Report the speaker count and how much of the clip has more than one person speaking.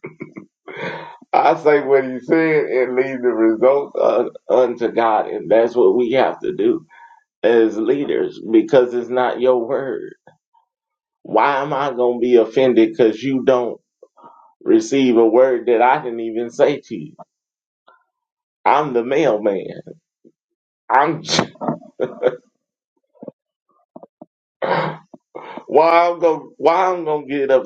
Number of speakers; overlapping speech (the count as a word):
one, no overlap